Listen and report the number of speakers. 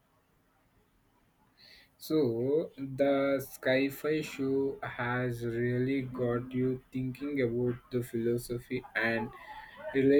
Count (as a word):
one